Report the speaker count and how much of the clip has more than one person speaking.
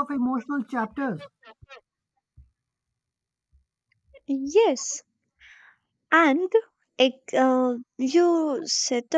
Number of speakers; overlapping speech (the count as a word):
two, no overlap